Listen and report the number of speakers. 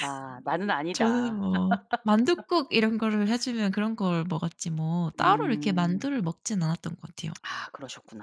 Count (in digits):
2